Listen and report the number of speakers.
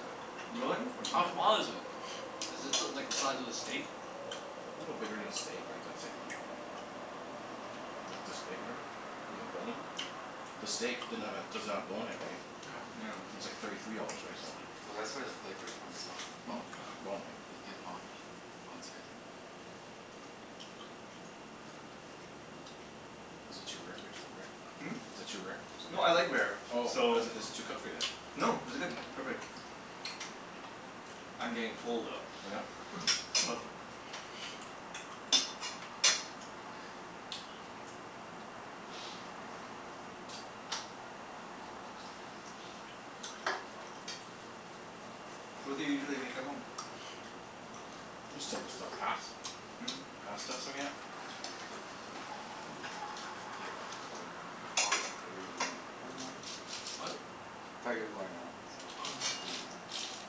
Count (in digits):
4